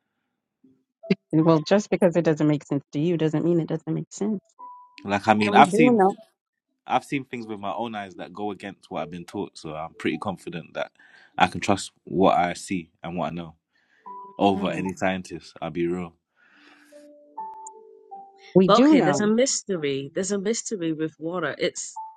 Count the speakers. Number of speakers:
three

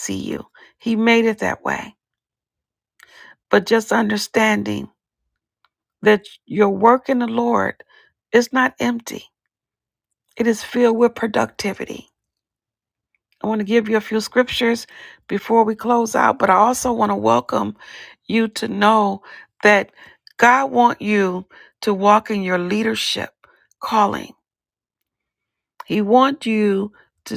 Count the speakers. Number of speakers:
one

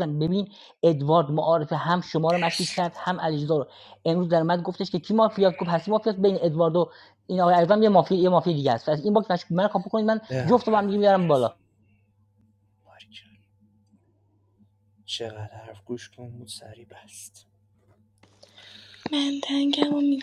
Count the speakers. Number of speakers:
three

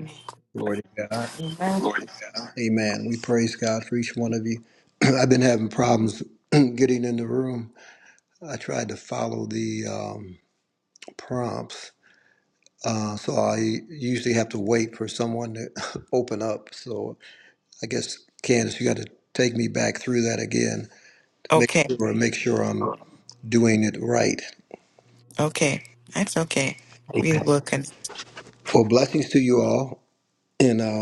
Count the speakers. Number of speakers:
two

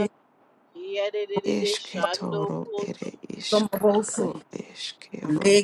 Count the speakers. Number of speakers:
three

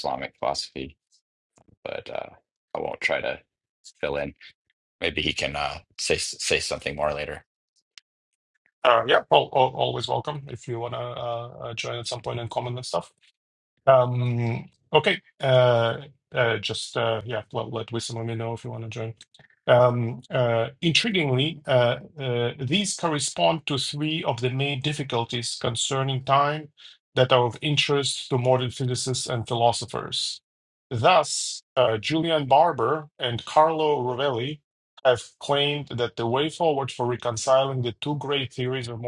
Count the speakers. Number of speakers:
two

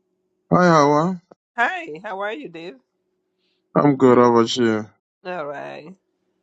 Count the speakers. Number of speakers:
two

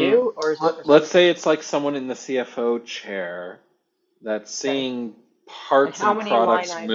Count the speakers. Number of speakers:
two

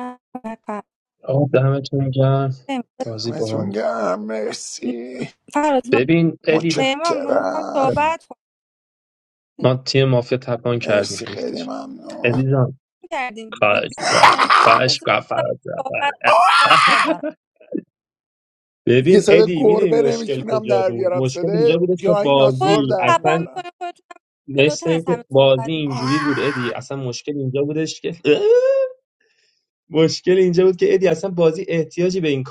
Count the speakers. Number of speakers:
three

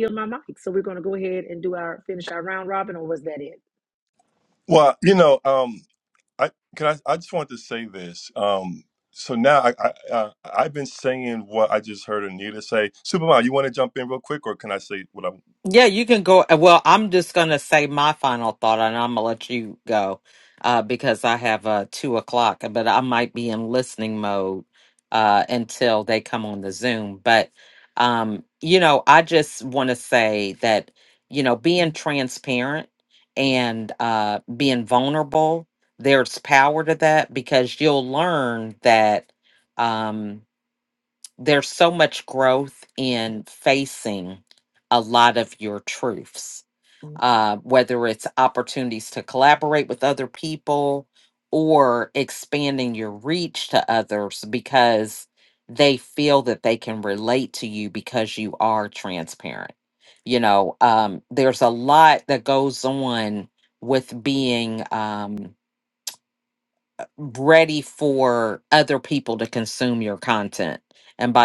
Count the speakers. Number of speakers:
three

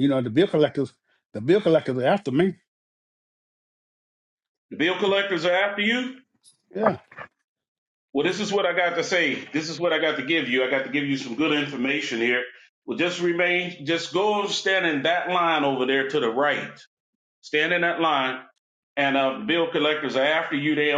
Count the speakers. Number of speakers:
two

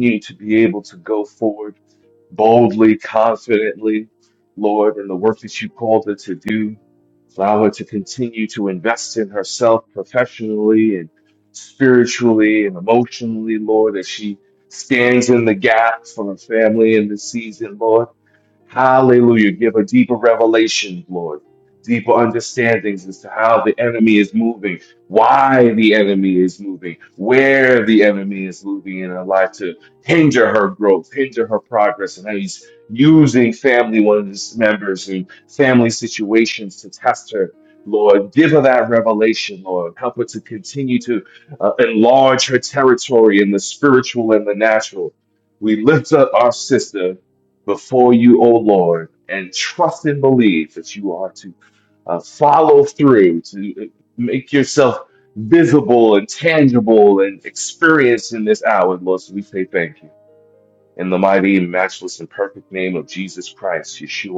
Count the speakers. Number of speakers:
one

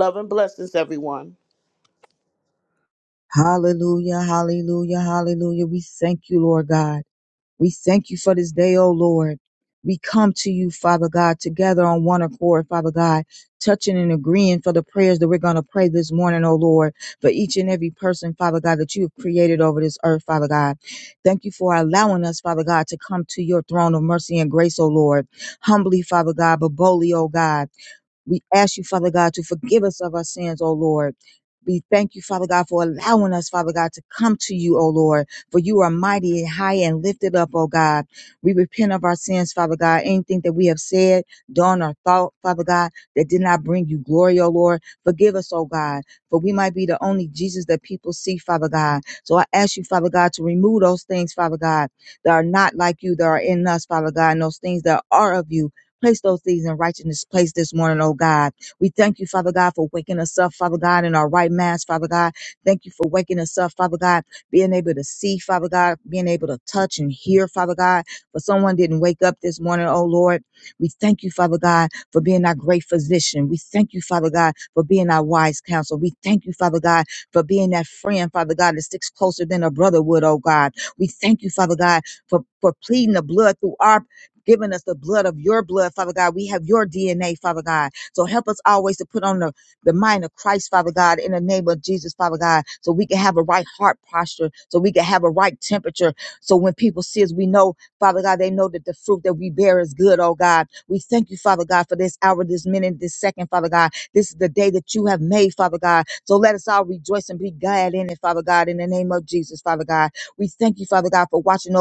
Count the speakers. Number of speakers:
two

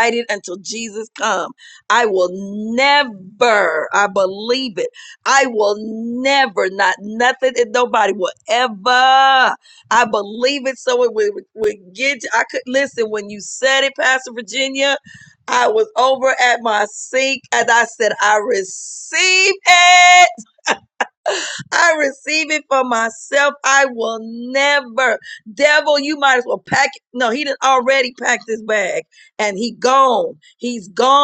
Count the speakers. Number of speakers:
one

